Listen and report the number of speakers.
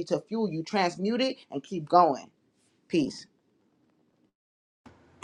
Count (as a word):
one